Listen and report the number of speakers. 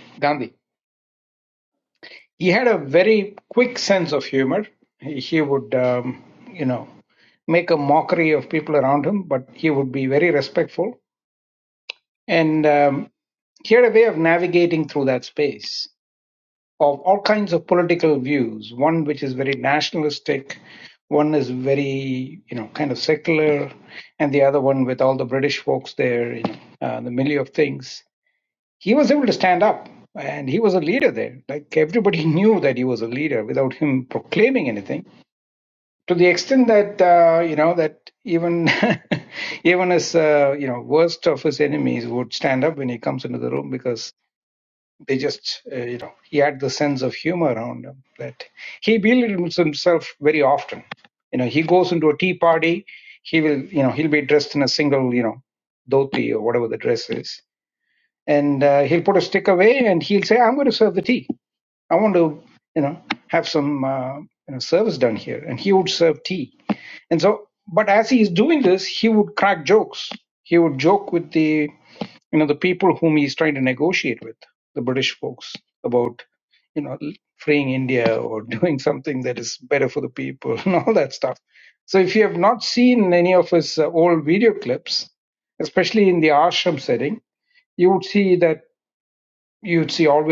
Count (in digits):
1